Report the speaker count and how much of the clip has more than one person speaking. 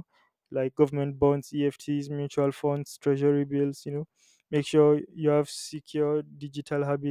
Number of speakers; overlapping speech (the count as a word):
one, no overlap